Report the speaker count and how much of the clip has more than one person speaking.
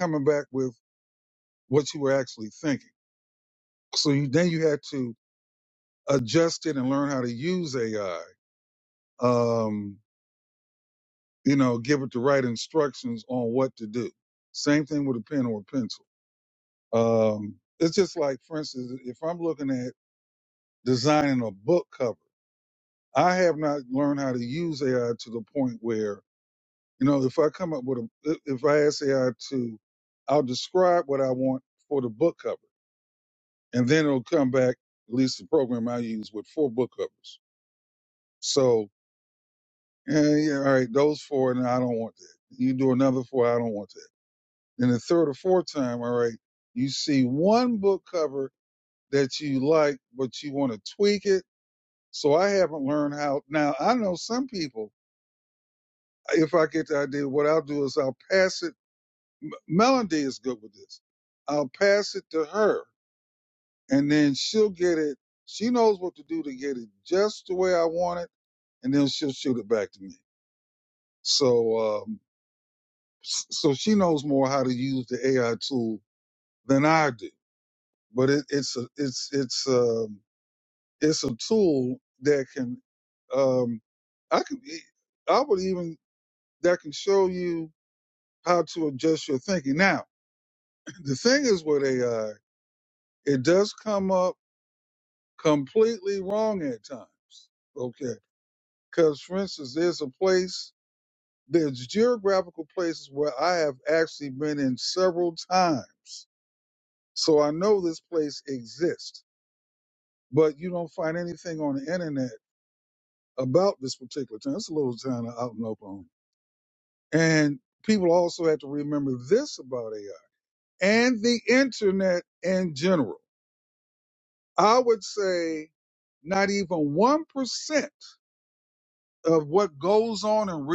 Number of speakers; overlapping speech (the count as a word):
one, no overlap